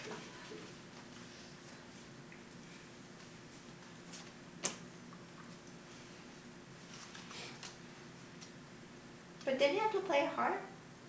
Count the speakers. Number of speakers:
1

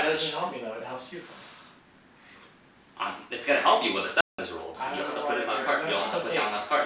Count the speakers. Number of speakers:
2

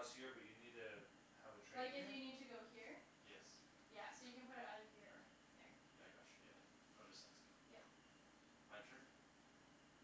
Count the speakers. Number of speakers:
3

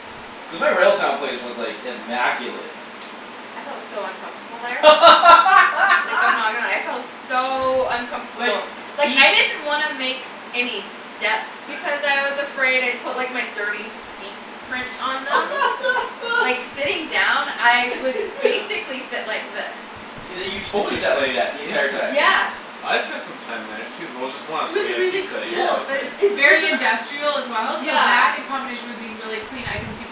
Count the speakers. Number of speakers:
4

